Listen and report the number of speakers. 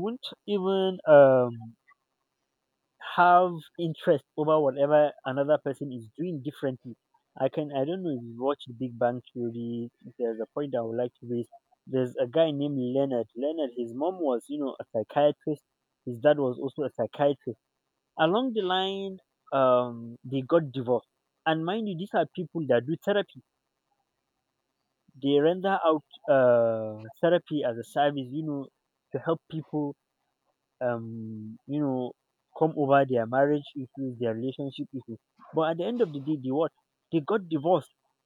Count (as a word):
one